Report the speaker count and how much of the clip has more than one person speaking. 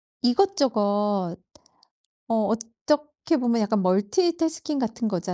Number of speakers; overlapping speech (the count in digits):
1, no overlap